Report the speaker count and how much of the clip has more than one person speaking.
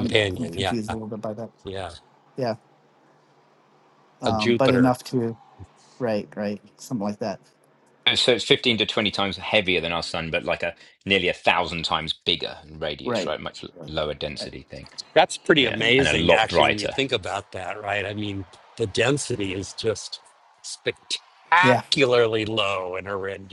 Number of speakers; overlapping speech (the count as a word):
three, about 14%